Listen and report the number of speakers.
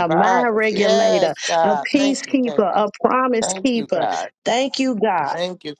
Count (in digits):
2